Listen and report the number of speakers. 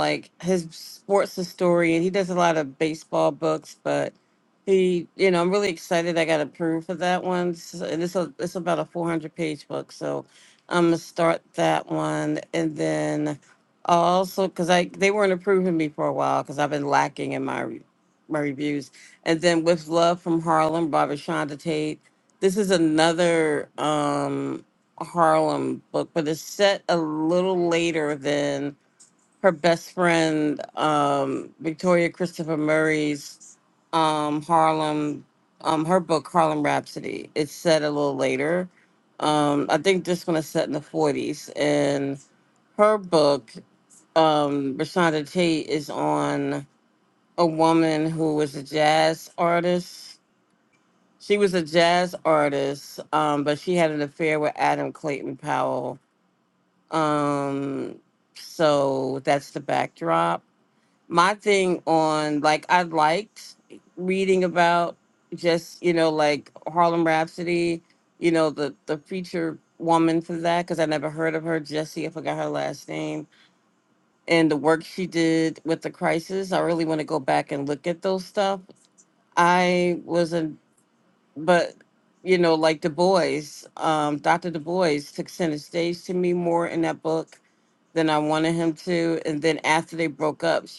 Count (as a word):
one